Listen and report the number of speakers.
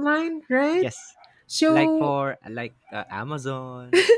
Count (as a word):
two